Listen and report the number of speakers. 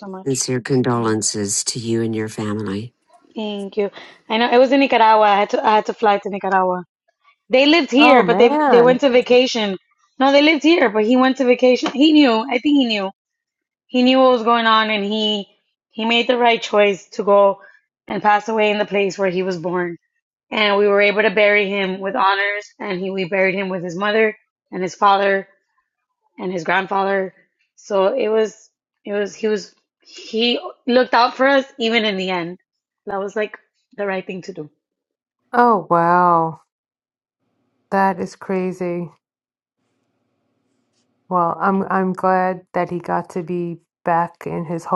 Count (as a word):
three